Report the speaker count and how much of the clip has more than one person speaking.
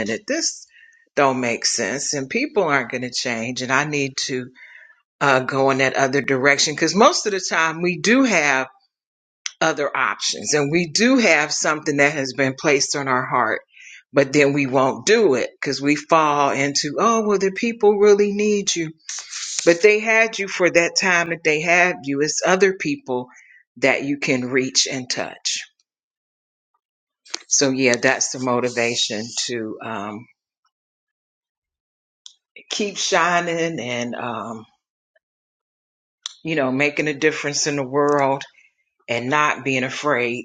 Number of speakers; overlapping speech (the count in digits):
1, no overlap